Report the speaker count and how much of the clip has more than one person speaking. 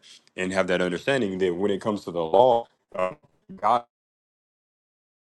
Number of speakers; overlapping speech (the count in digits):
1, no overlap